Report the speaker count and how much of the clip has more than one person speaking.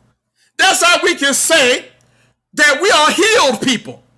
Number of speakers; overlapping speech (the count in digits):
1, no overlap